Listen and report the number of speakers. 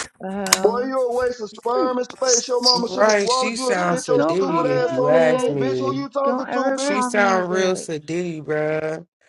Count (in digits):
3